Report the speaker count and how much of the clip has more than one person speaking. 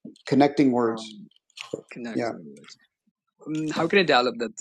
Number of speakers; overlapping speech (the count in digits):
2, about 10%